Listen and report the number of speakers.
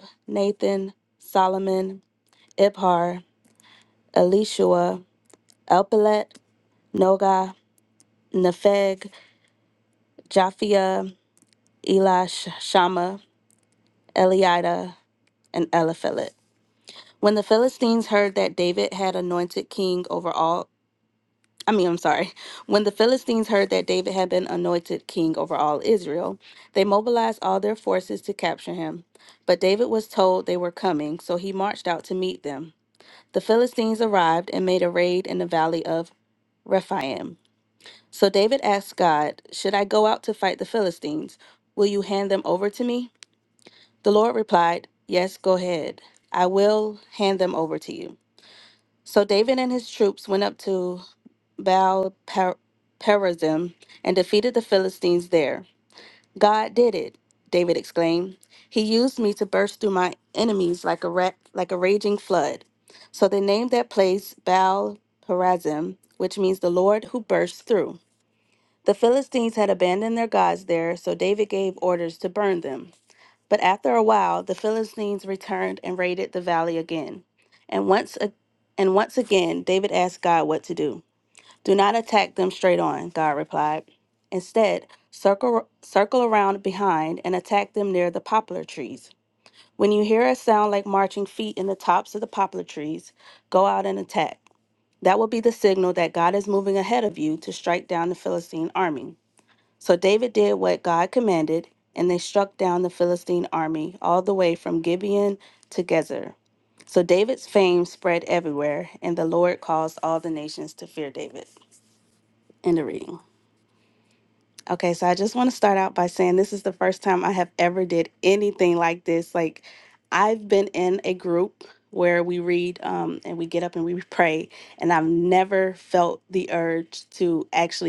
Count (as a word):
one